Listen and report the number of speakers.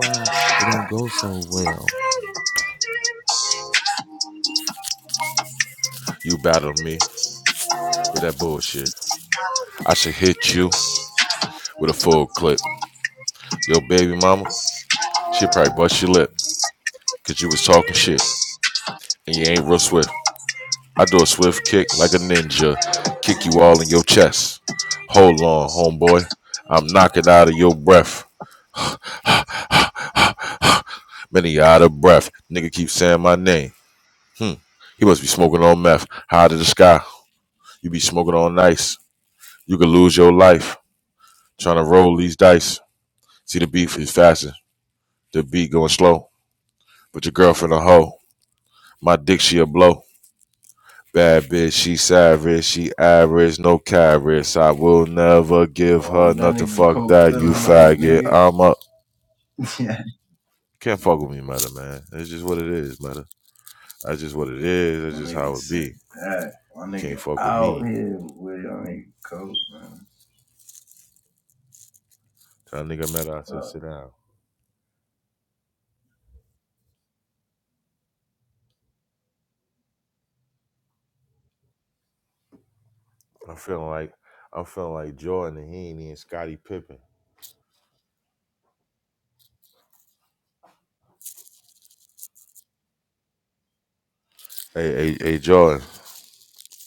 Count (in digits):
3